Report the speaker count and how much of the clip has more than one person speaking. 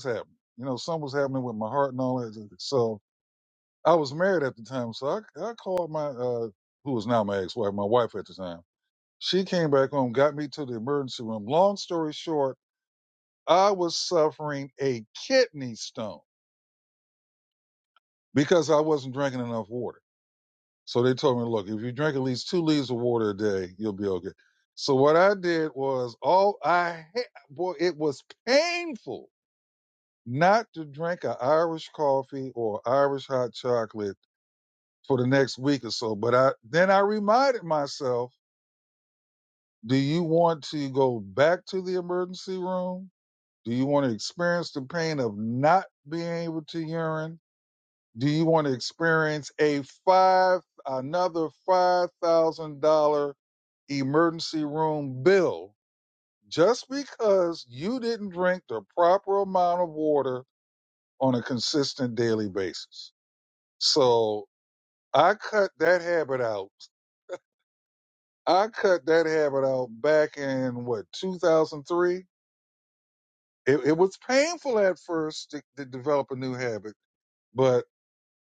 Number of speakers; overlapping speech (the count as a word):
one, no overlap